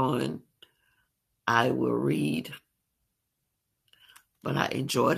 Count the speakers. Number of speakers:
1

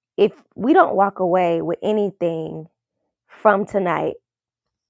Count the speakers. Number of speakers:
1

